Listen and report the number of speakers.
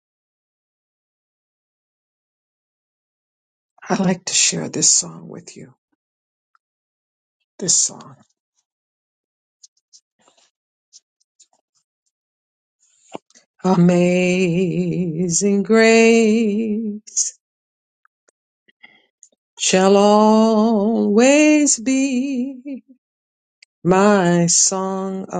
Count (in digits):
1